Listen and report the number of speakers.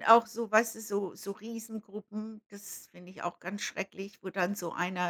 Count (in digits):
1